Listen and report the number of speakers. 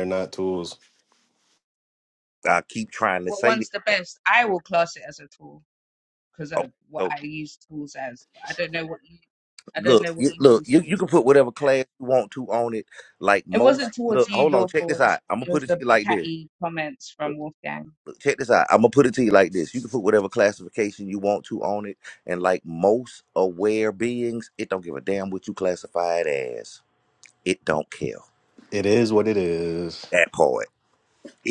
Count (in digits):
3